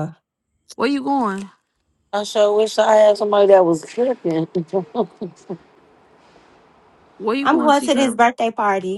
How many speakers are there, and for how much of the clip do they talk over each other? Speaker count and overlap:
3, about 9%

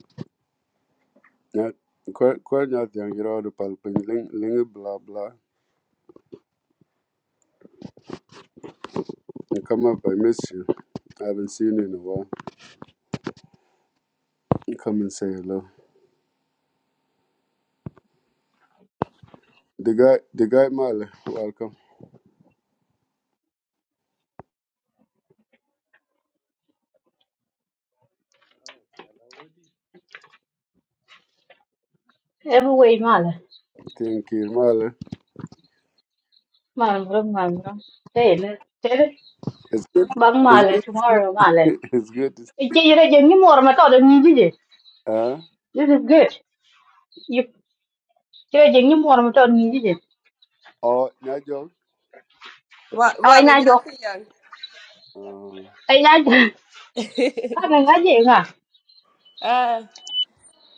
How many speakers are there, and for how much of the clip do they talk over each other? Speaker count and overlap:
3, about 2%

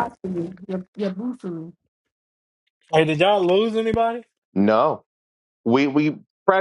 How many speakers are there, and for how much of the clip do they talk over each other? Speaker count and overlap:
3, no overlap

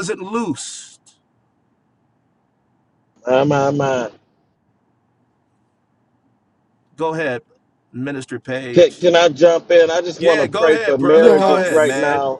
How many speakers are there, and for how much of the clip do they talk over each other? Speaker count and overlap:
2, about 18%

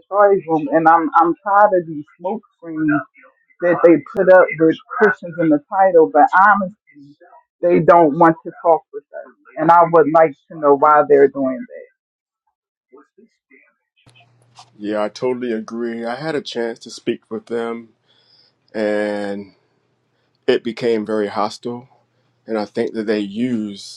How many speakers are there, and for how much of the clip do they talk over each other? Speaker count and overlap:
2, no overlap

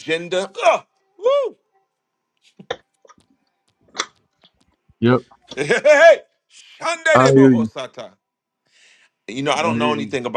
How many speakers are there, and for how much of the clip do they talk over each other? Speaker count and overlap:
2, about 6%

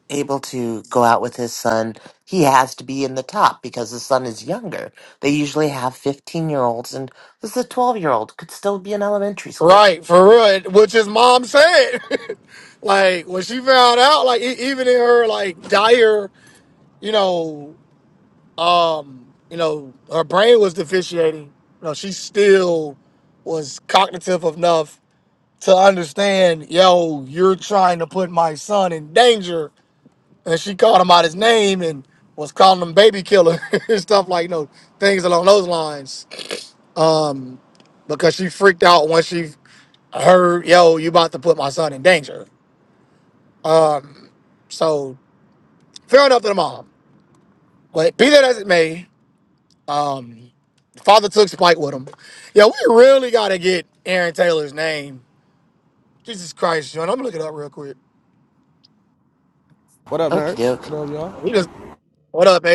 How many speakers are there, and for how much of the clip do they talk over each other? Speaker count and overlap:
3, about 1%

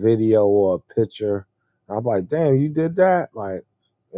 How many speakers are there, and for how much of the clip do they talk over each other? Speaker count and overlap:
1, no overlap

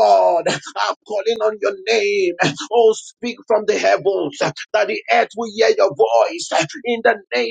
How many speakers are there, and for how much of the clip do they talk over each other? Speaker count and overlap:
1, no overlap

